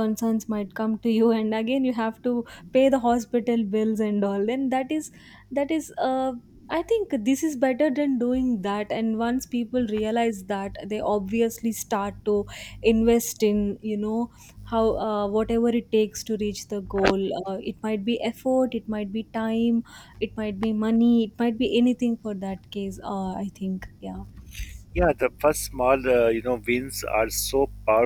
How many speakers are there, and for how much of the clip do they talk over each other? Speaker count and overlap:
two, no overlap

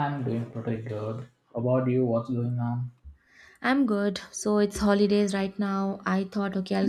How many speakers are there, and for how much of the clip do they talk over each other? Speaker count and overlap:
two, no overlap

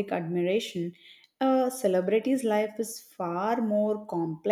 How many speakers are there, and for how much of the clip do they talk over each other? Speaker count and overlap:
one, no overlap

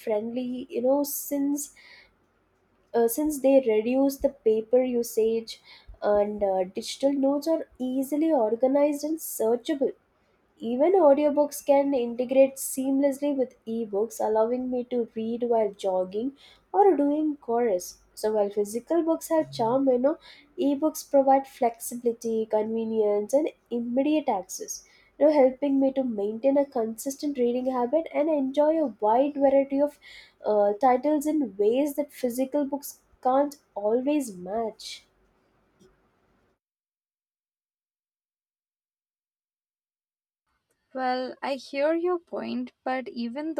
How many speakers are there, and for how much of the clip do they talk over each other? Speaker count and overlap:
two, no overlap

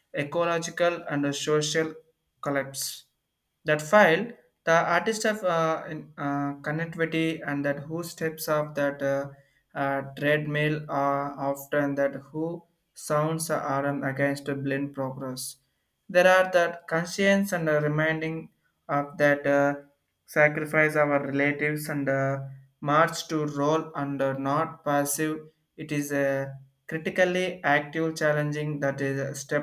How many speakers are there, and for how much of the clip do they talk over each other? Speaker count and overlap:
one, no overlap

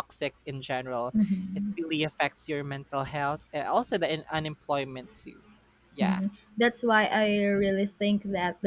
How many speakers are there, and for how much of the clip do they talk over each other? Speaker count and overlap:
two, no overlap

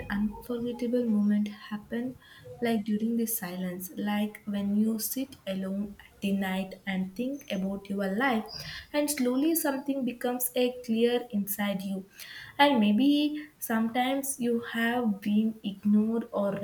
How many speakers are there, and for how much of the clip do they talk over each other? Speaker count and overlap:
one, no overlap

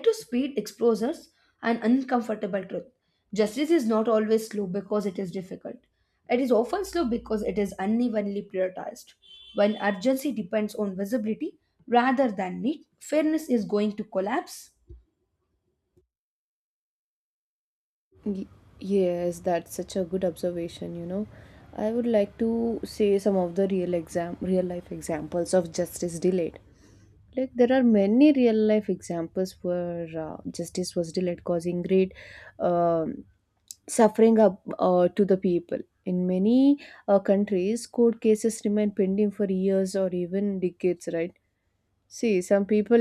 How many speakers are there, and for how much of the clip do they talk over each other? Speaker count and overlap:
two, no overlap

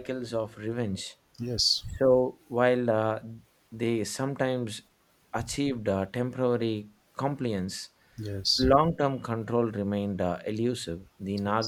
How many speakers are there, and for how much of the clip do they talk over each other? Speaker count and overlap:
two, about 3%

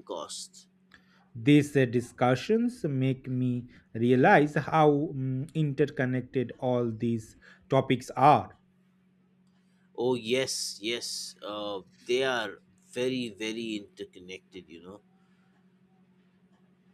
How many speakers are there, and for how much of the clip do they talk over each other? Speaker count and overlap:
two, no overlap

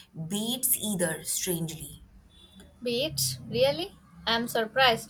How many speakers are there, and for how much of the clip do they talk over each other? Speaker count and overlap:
two, no overlap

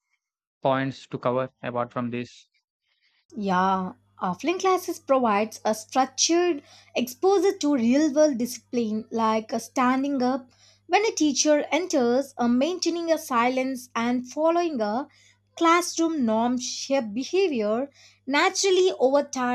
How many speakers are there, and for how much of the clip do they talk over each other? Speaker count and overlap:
two, no overlap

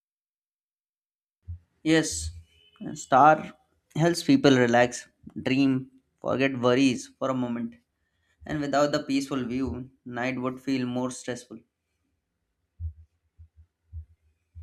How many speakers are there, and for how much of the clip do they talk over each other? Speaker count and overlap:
one, no overlap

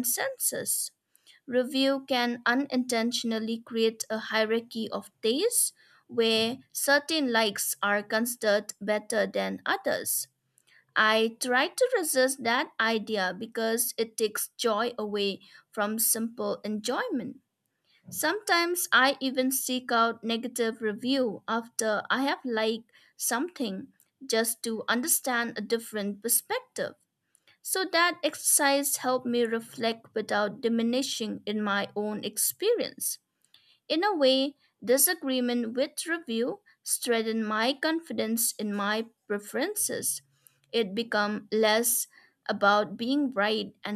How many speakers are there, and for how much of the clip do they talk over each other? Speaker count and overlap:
one, no overlap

